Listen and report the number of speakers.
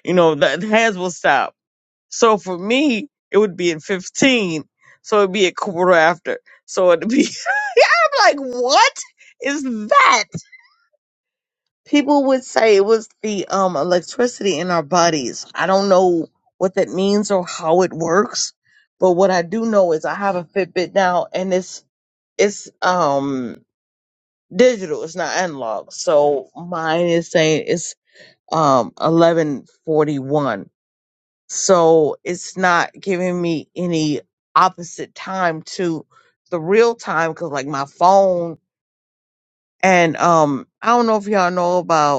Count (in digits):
1